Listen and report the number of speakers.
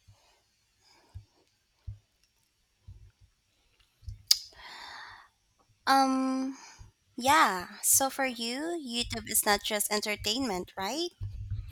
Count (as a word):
one